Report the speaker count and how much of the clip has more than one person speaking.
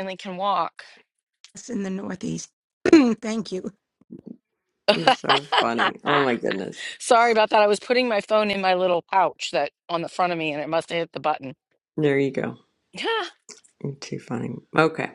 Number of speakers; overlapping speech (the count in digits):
3, no overlap